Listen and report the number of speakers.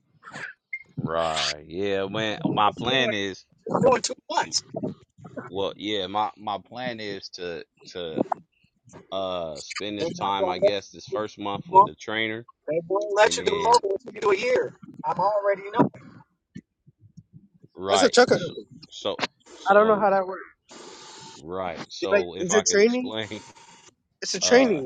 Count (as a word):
three